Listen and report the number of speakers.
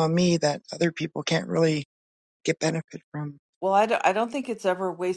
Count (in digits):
2